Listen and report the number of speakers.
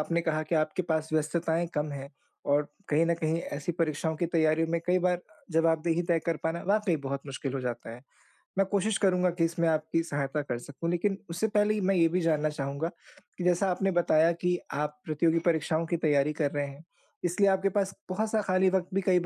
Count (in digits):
1